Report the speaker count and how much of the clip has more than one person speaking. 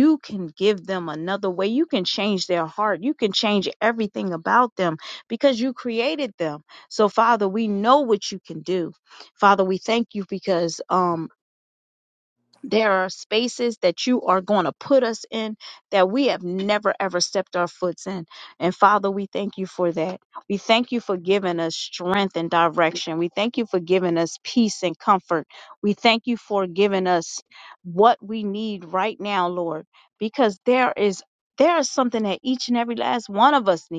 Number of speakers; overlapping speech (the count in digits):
1, no overlap